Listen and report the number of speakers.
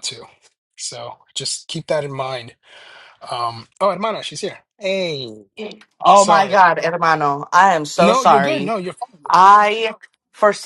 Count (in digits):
2